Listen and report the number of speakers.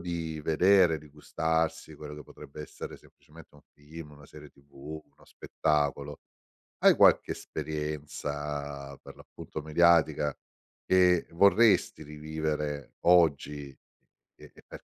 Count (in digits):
1